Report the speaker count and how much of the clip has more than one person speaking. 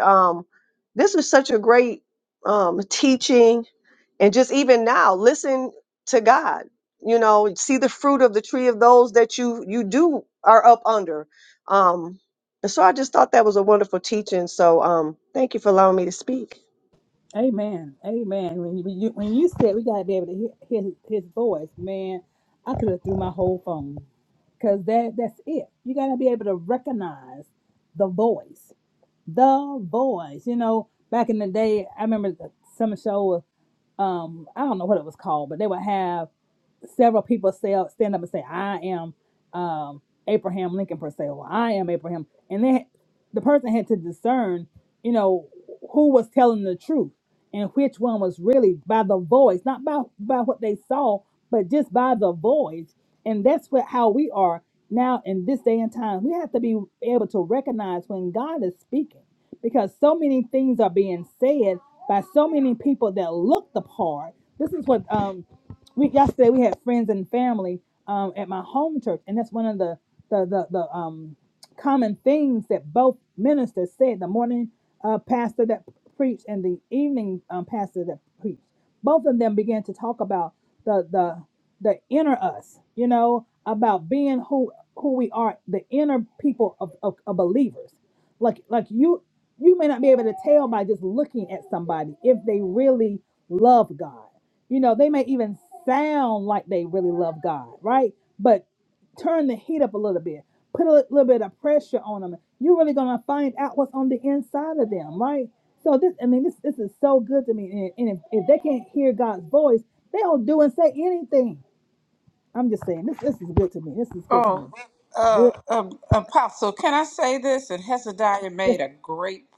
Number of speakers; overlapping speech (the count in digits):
3, about 1%